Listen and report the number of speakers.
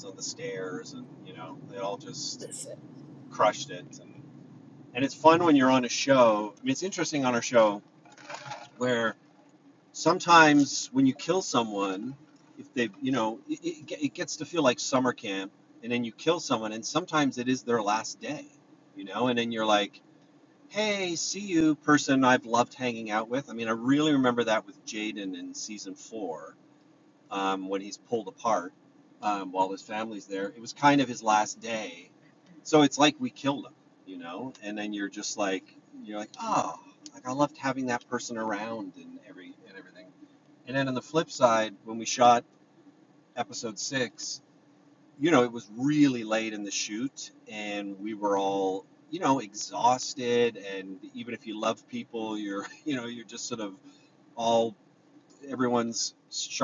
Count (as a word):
one